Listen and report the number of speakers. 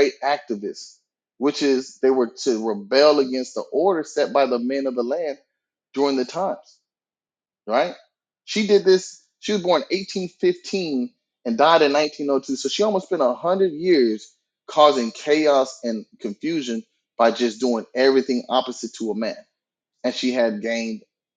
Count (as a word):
one